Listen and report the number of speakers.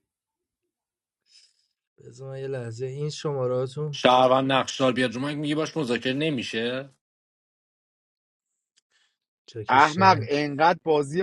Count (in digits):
3